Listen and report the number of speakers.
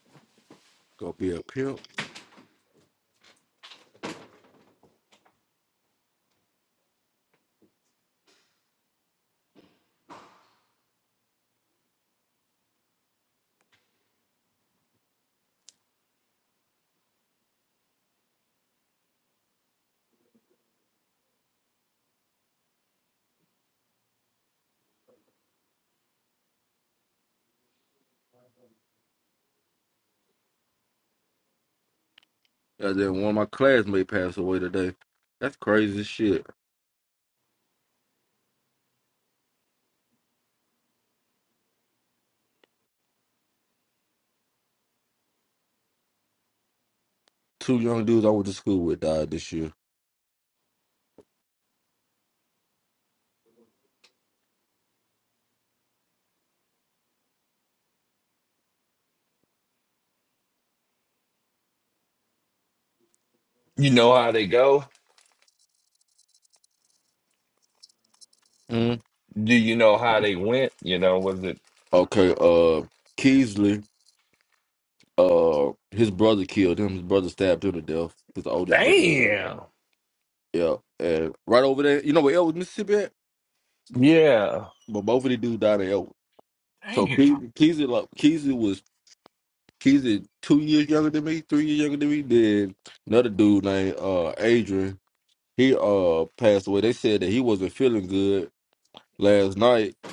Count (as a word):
two